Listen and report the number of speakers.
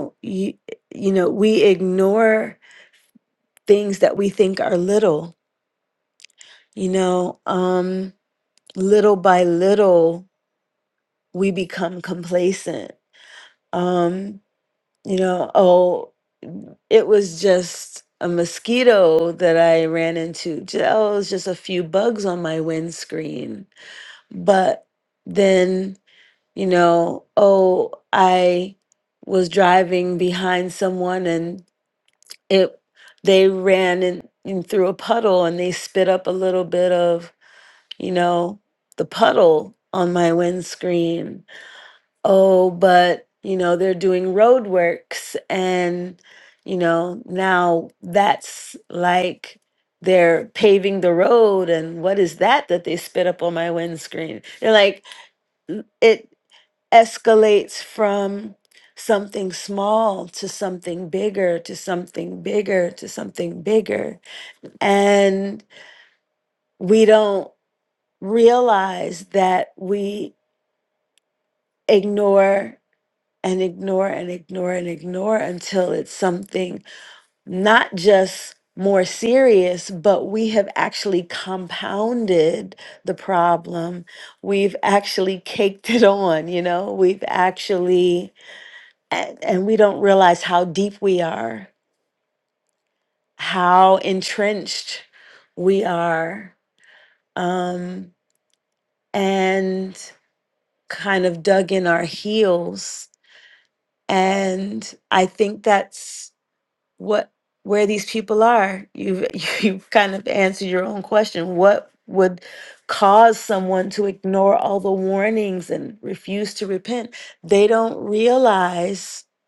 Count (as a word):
one